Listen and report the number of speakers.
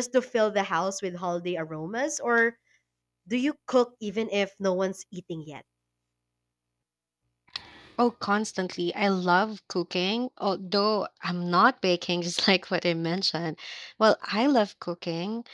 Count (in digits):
2